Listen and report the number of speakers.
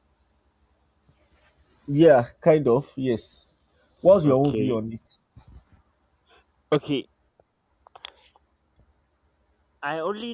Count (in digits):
2